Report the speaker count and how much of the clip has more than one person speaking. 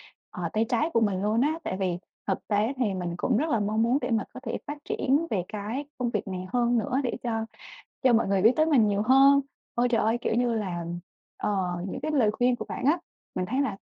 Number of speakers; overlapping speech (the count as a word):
one, no overlap